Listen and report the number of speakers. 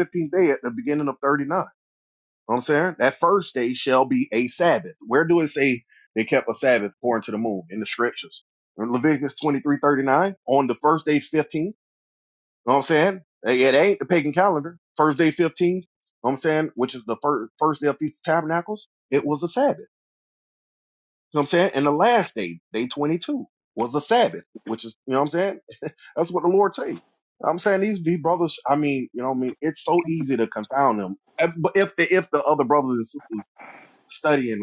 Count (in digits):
1